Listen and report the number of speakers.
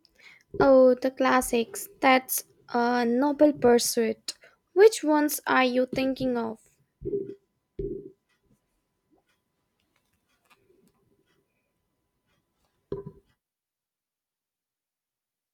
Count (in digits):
1